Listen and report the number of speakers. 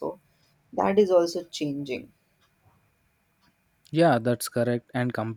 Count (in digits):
2